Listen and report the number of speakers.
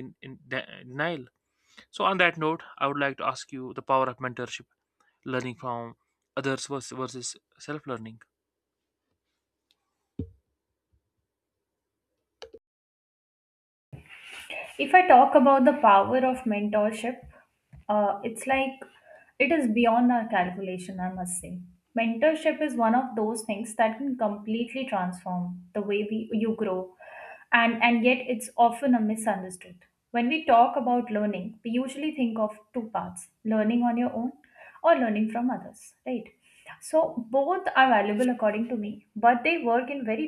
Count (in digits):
2